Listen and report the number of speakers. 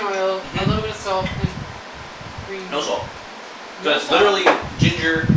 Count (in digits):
2